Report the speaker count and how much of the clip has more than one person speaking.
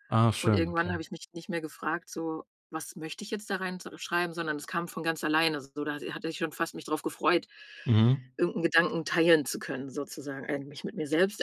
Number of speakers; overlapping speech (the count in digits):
2, about 5%